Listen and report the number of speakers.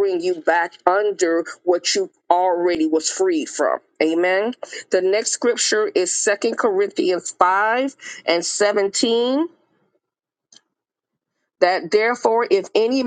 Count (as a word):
one